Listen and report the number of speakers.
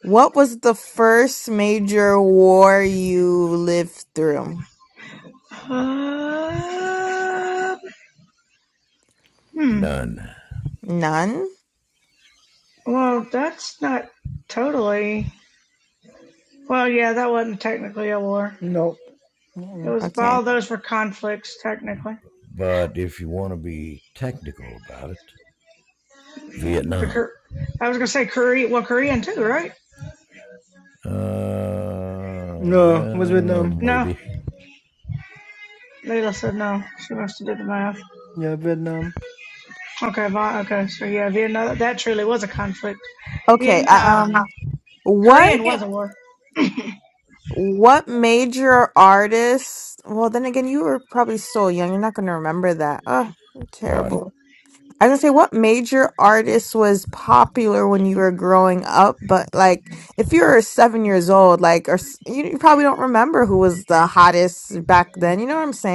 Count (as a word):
four